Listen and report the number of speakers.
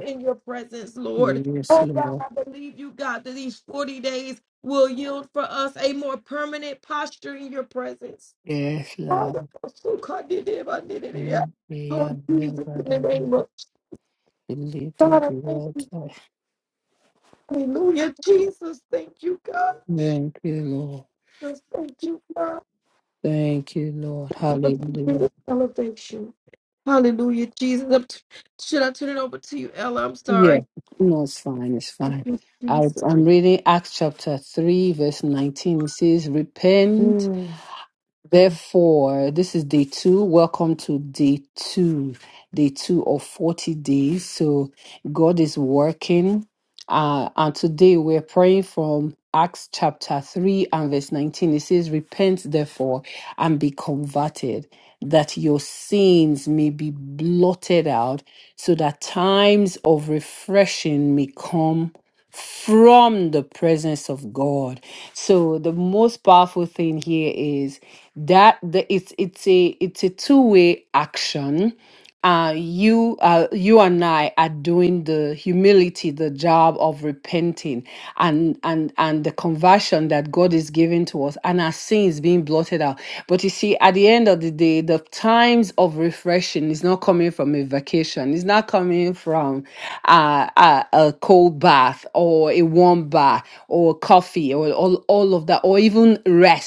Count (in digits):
2